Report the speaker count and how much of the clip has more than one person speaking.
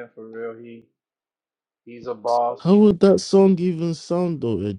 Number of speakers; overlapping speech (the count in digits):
2, no overlap